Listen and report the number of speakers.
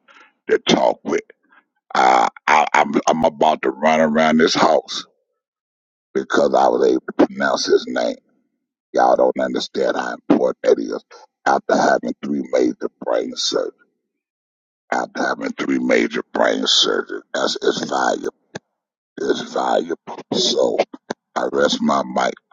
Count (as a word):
one